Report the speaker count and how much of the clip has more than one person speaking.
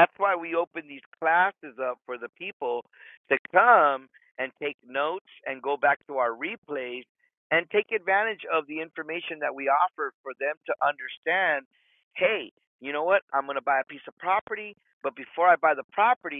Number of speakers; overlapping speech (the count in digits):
1, no overlap